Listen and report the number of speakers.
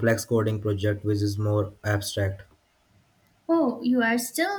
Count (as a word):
two